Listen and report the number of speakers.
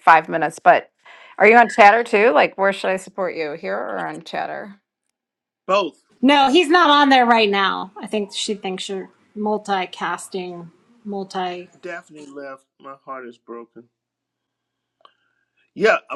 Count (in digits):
3